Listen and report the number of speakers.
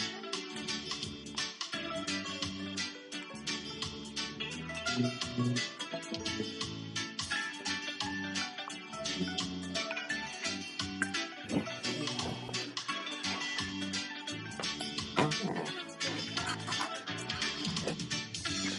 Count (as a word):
zero